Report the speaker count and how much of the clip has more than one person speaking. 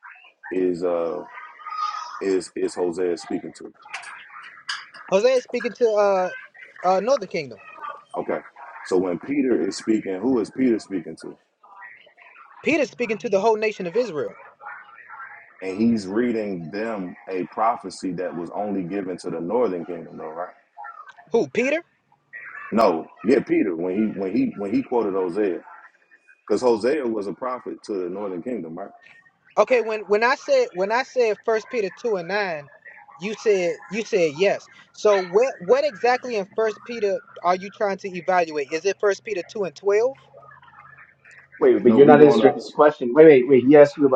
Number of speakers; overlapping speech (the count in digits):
3, about 2%